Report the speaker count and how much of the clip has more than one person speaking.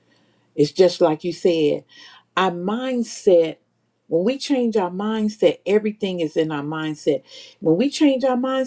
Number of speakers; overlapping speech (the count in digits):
1, no overlap